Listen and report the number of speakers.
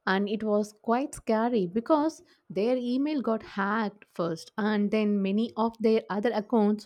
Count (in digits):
1